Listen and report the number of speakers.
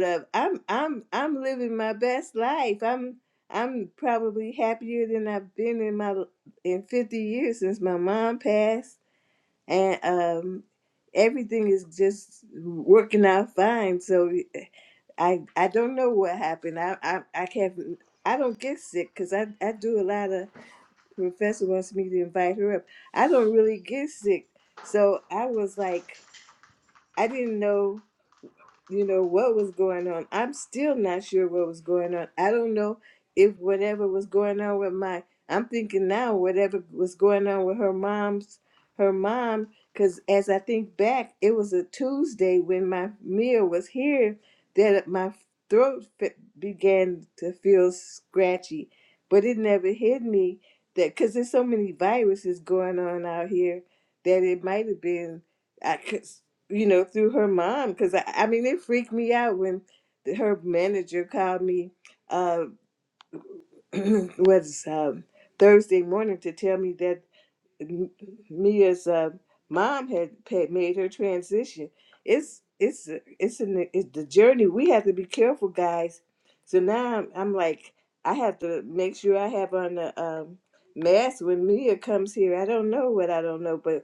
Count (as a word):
one